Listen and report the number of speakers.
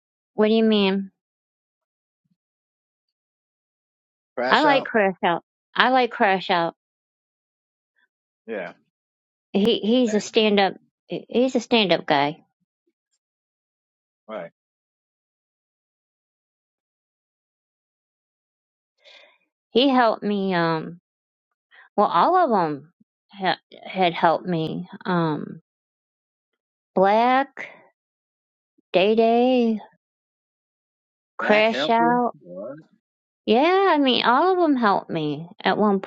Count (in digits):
2